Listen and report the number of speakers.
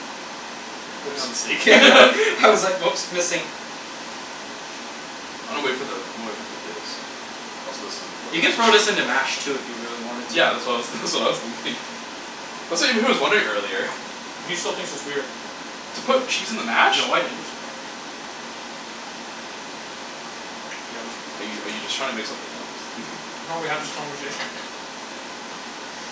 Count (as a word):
three